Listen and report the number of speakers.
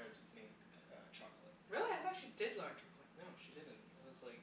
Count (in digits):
2